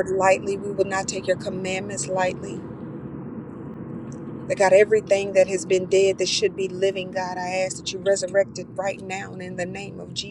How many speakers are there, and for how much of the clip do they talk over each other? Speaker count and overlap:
one, no overlap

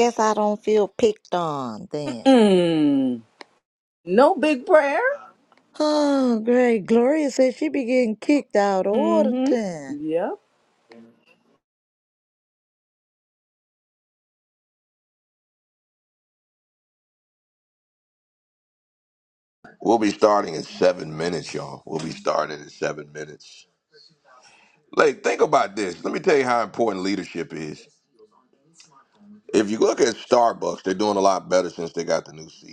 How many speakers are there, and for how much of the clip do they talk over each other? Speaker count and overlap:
three, about 2%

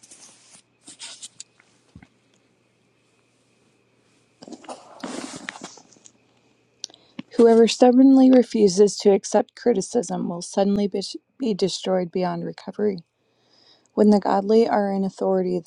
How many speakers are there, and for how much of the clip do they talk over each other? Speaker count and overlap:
one, no overlap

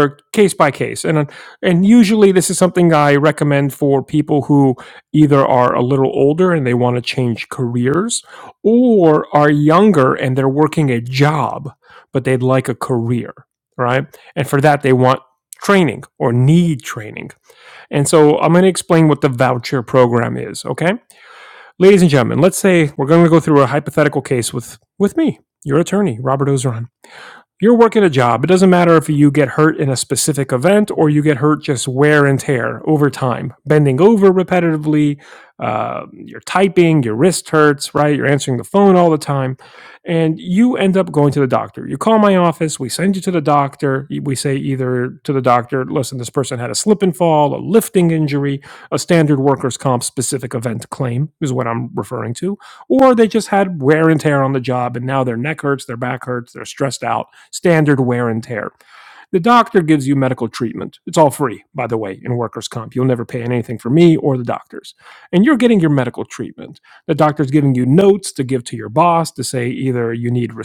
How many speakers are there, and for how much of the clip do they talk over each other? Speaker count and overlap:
one, no overlap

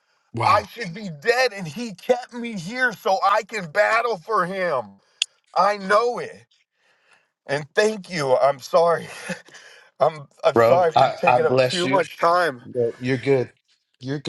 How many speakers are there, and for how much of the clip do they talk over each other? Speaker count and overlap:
two, about 12%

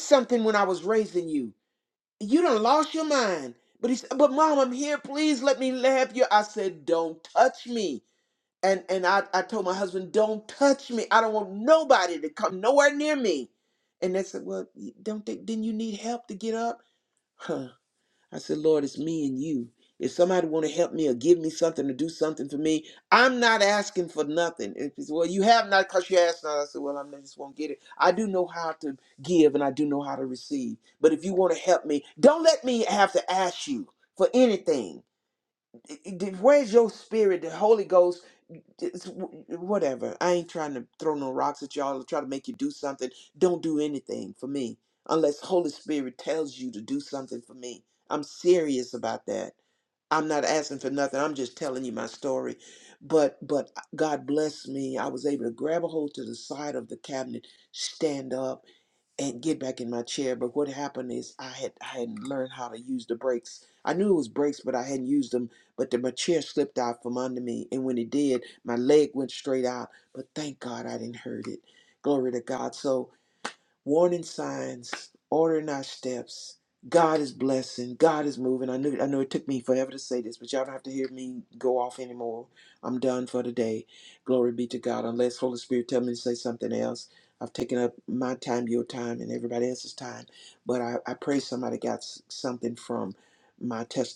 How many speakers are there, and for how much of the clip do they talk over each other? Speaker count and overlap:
one, no overlap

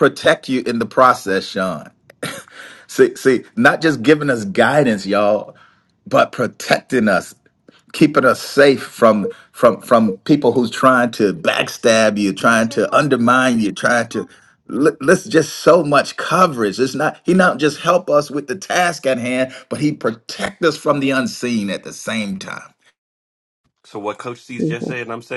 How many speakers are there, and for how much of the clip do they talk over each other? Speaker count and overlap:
two, no overlap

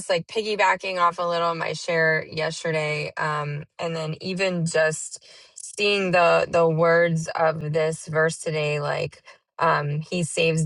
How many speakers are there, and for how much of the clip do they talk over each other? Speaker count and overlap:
one, no overlap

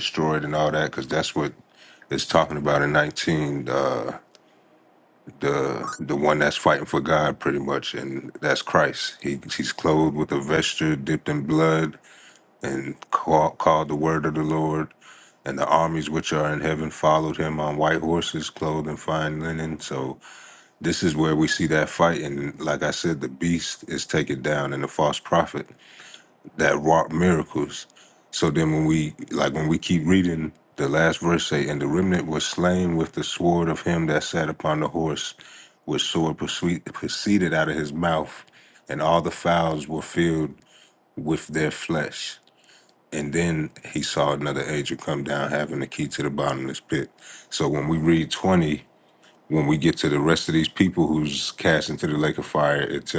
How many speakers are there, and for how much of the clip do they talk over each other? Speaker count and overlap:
one, no overlap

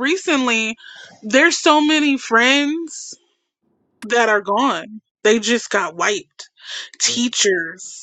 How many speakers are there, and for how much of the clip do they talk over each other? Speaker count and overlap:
one, no overlap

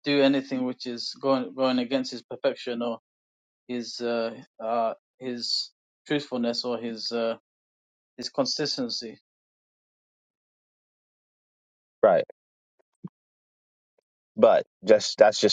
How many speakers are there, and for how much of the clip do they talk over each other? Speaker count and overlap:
two, no overlap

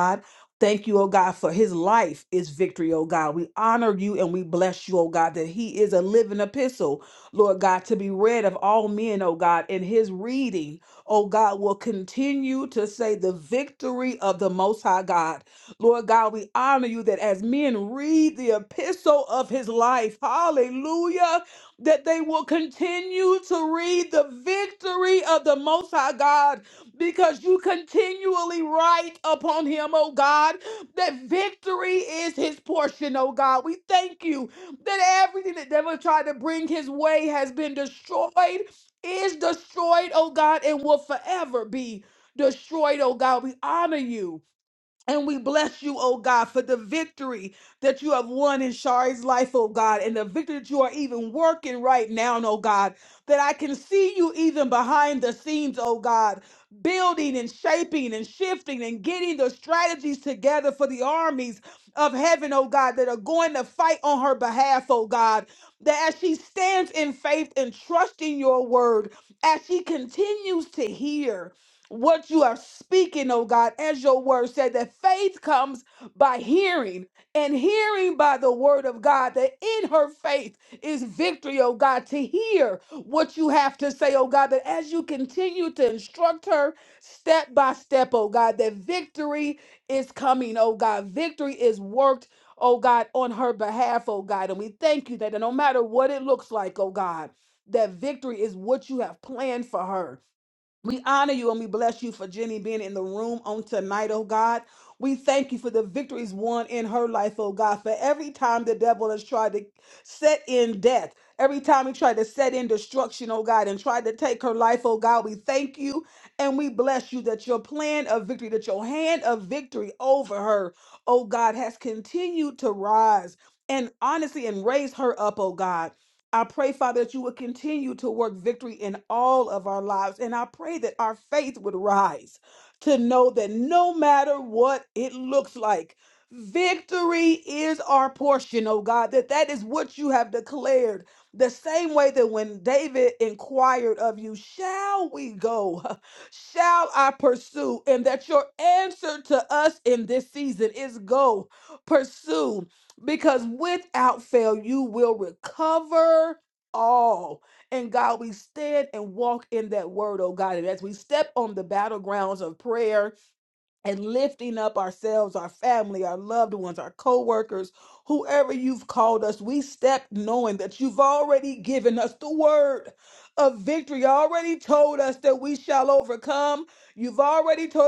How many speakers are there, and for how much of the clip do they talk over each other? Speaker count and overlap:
one, no overlap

